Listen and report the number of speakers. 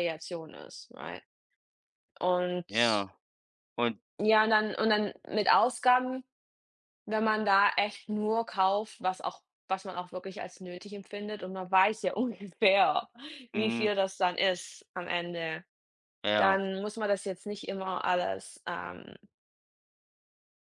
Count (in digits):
2